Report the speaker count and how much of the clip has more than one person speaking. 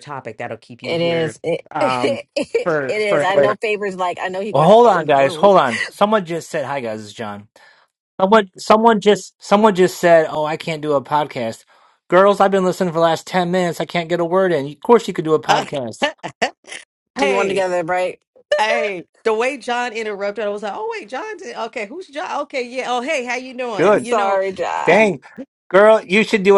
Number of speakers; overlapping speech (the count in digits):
3, about 16%